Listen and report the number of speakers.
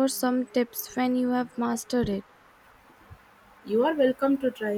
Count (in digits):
2